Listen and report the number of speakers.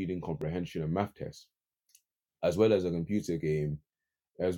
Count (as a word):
one